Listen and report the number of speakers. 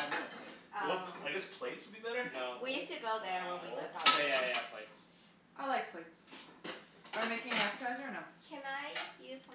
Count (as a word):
four